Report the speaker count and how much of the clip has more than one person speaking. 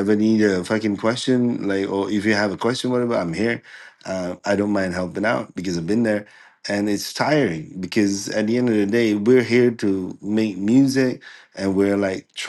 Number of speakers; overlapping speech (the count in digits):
1, no overlap